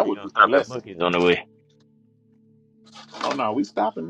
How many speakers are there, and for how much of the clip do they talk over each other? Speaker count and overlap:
two, about 20%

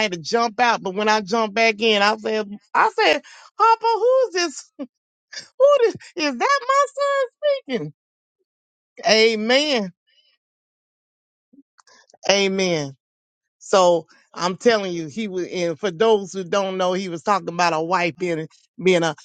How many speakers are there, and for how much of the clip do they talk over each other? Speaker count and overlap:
one, no overlap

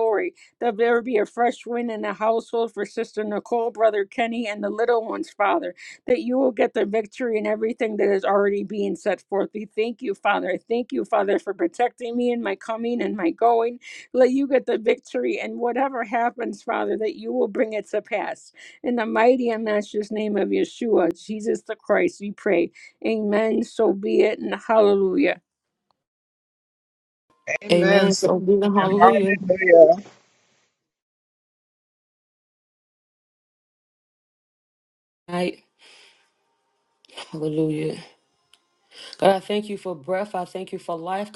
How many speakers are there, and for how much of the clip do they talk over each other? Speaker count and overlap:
three, about 3%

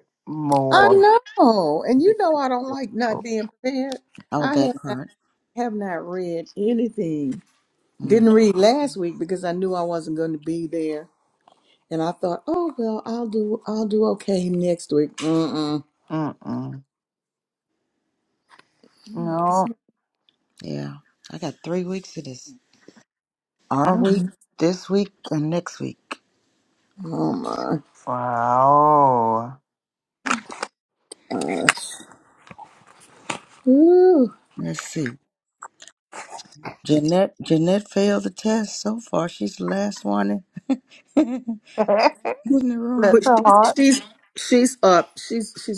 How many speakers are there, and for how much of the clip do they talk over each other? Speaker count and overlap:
three, about 4%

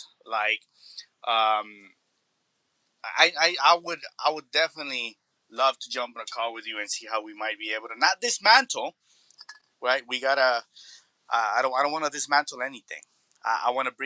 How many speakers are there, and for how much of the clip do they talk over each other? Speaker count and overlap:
one, no overlap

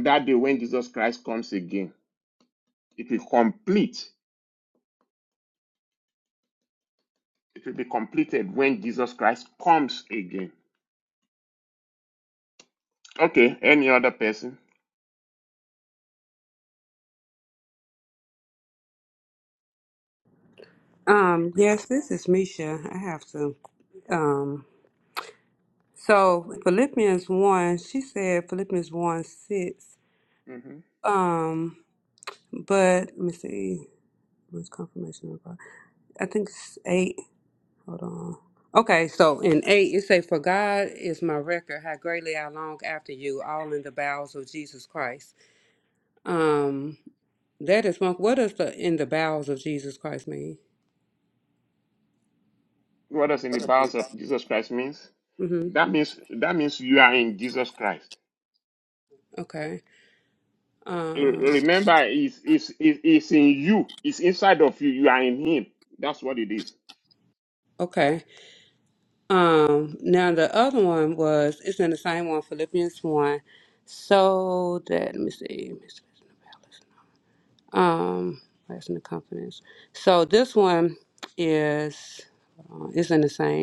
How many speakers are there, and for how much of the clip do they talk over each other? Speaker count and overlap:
two, under 1%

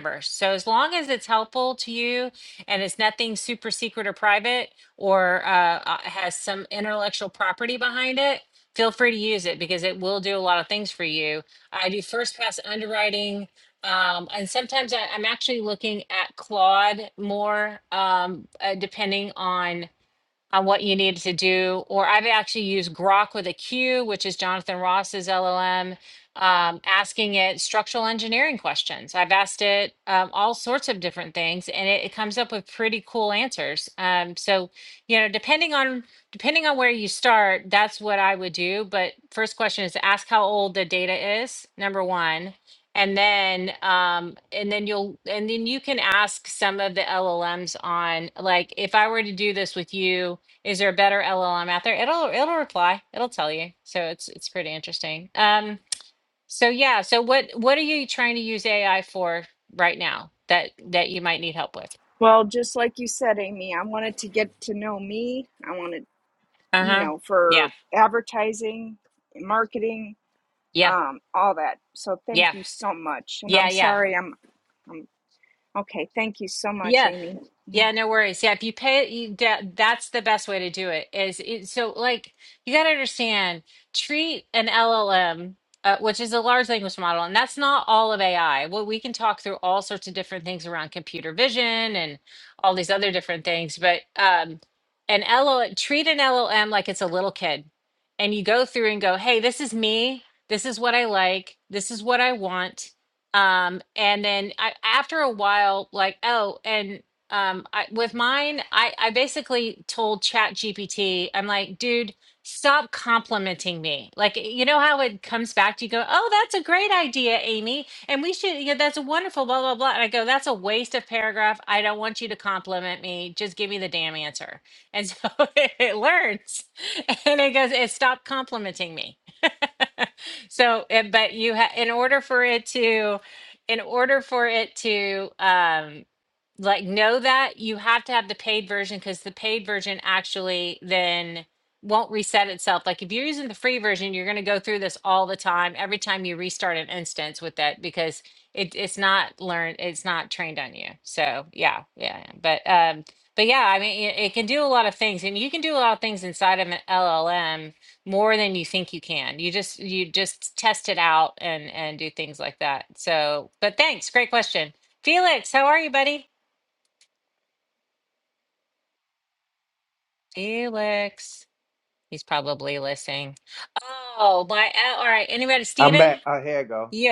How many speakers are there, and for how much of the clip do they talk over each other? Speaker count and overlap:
three, about 1%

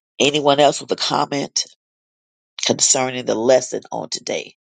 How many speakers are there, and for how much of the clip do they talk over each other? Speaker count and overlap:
one, no overlap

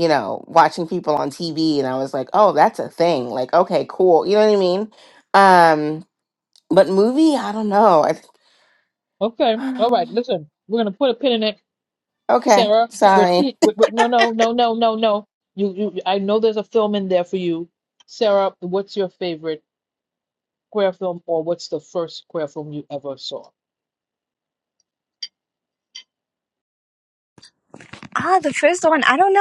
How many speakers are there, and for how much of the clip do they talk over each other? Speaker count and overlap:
three, about 2%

